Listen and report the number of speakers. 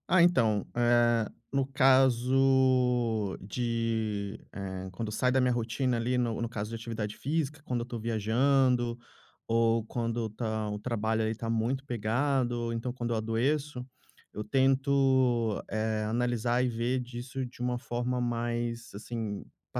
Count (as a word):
one